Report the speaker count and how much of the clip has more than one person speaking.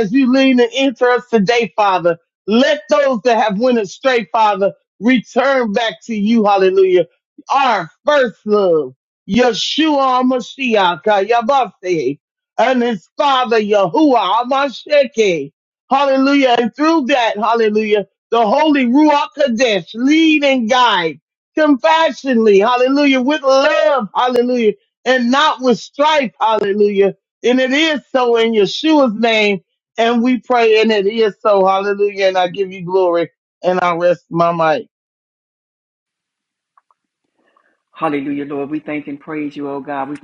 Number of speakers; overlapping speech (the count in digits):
2, no overlap